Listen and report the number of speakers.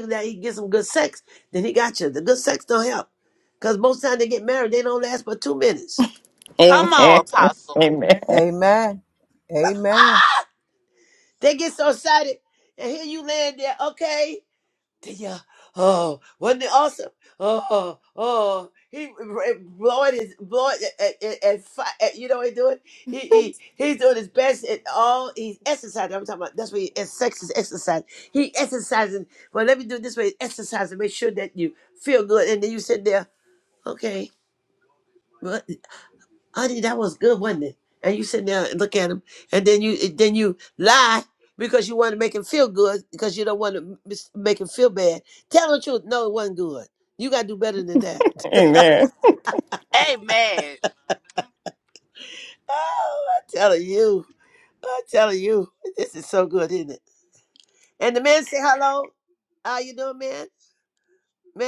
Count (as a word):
four